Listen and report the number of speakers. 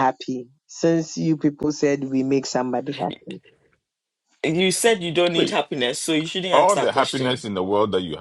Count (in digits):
3